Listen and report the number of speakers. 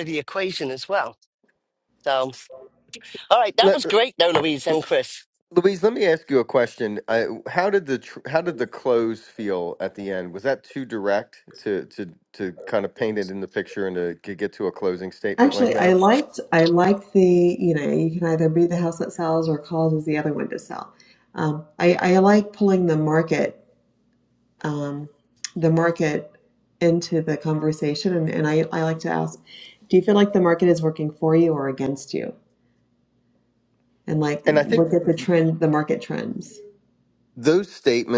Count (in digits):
3